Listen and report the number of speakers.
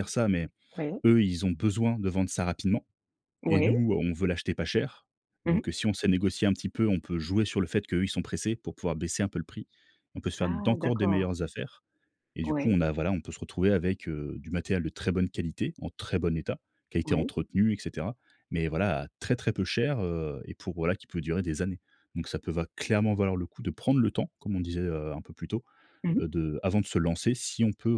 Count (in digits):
2